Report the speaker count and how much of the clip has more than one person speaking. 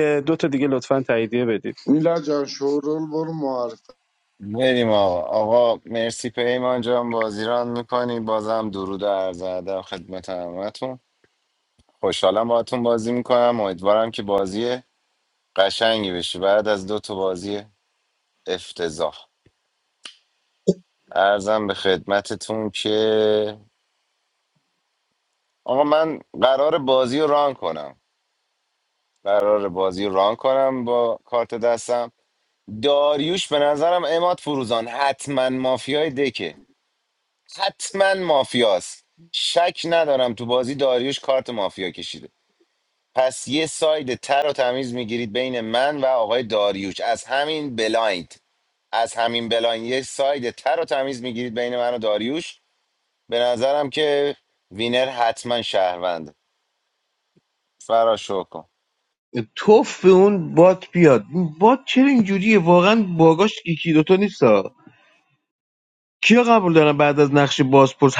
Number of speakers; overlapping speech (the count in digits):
4, no overlap